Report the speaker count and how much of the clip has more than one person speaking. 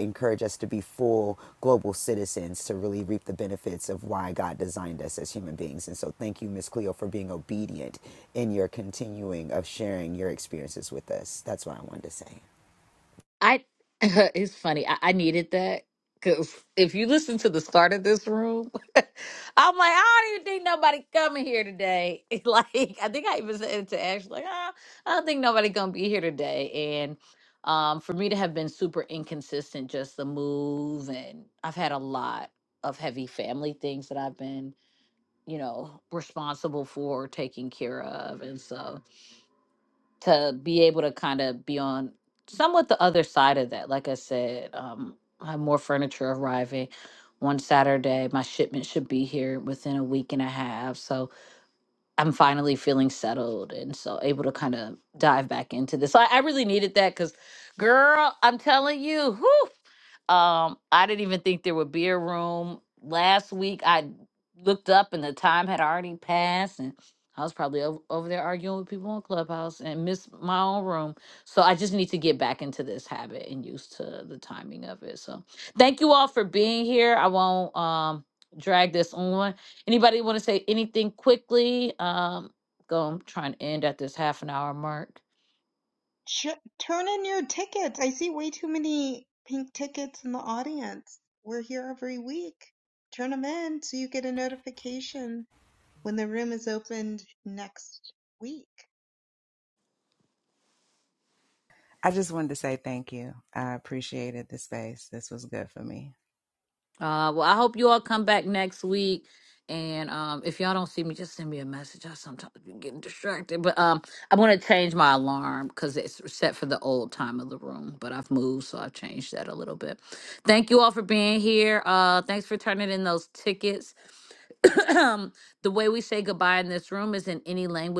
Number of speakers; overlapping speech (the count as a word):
four, no overlap